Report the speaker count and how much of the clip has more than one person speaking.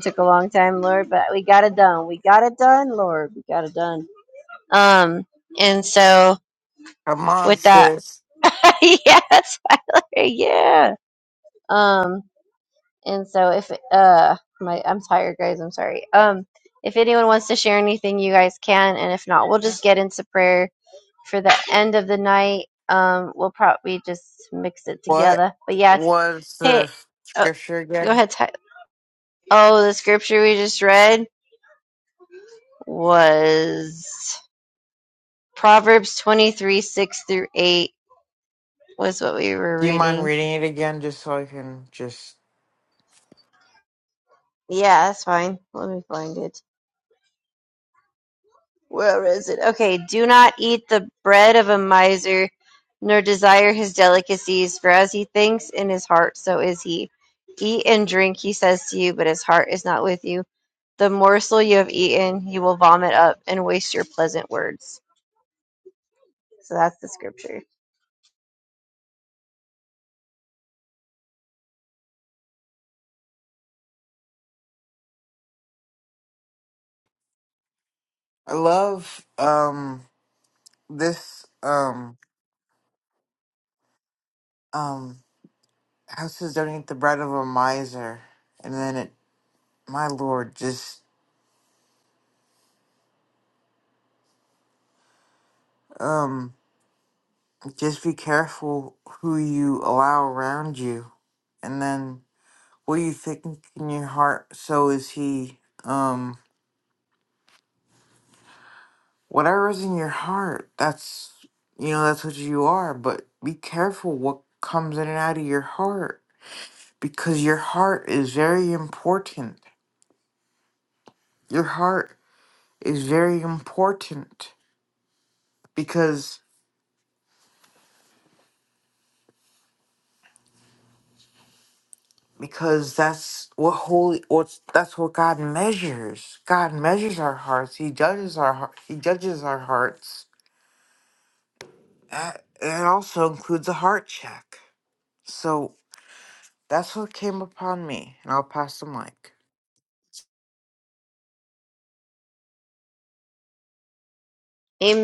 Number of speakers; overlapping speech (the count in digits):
2, about 1%